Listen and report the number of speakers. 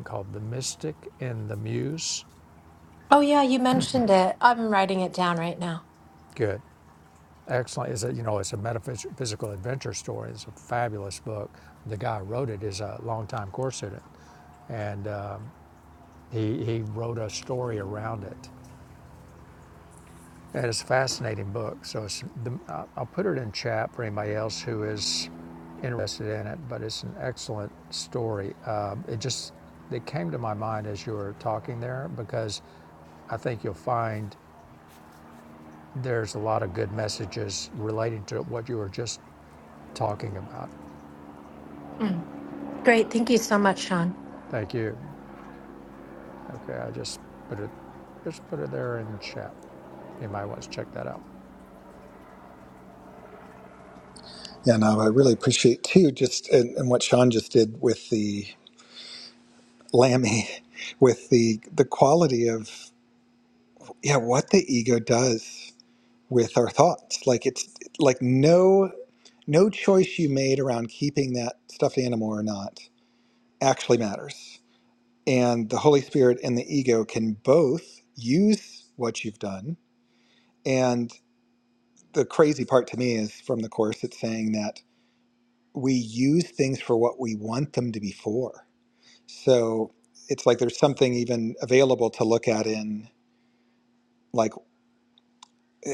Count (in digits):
3